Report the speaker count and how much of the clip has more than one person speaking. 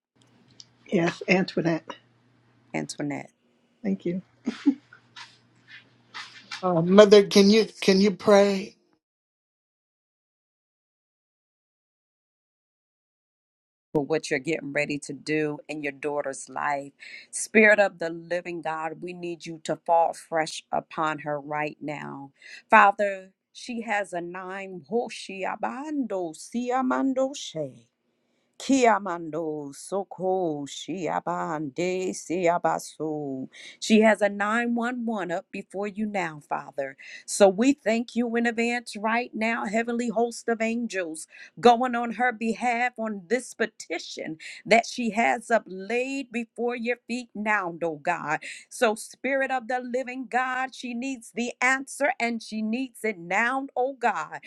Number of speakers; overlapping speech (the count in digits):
3, no overlap